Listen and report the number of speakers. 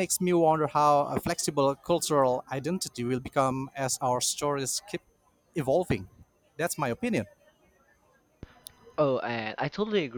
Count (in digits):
2